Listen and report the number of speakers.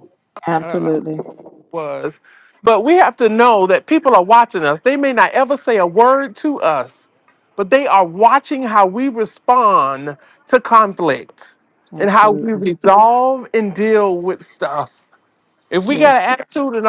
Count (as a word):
two